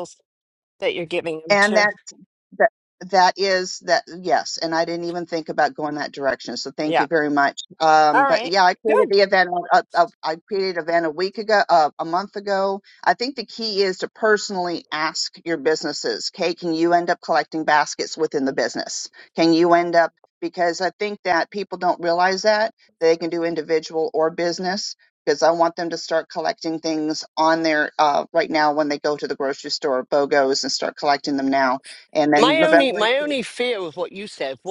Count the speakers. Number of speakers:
3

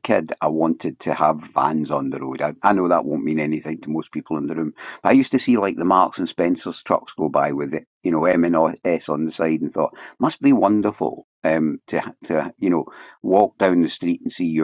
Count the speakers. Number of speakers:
1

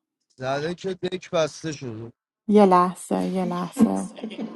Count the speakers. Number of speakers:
2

